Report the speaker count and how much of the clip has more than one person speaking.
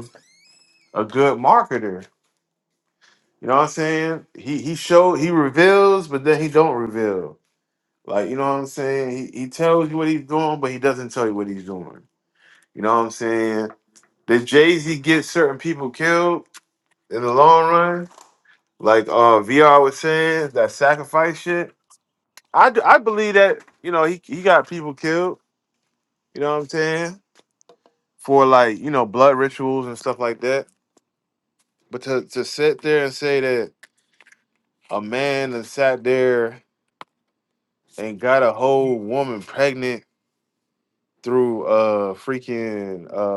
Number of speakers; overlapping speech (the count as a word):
one, no overlap